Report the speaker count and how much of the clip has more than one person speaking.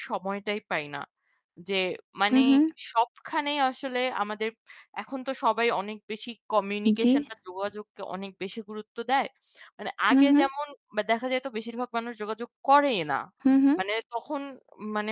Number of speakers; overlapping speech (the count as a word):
two, about 5%